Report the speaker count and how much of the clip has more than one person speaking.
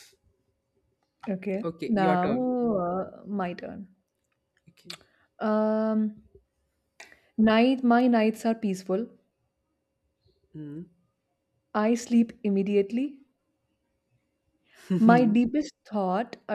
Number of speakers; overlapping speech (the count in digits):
2, about 4%